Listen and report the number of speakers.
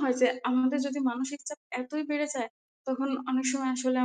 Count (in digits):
1